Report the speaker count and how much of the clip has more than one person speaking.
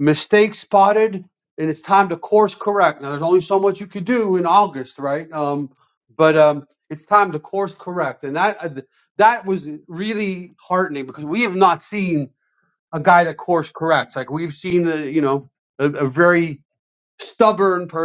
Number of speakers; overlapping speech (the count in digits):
1, no overlap